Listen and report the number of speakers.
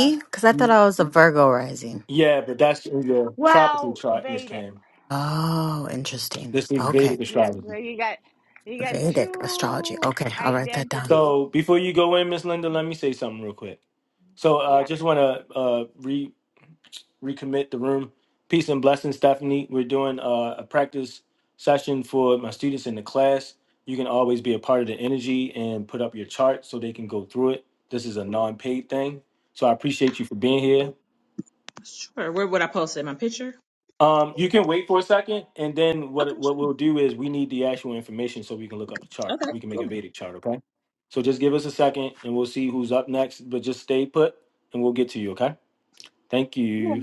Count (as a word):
four